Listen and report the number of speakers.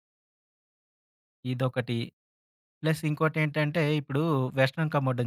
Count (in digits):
1